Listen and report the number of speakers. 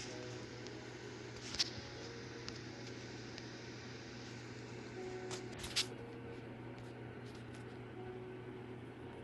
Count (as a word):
zero